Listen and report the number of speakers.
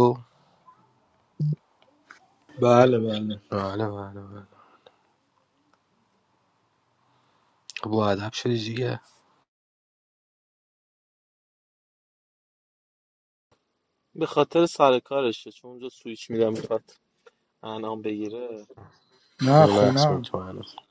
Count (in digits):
3